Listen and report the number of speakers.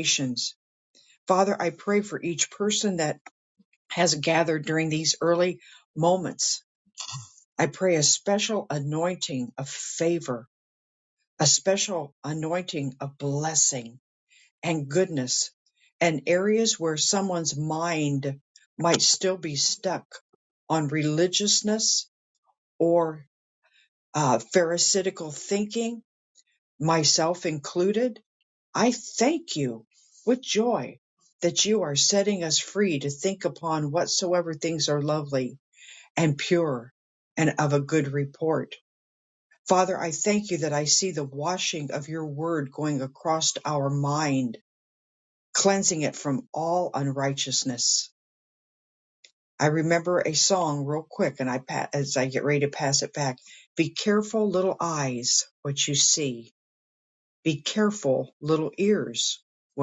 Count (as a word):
one